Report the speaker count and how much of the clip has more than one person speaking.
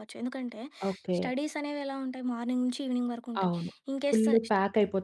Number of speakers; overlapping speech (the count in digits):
2, about 13%